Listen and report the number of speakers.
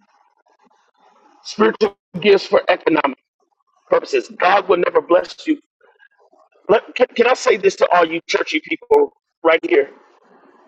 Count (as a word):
one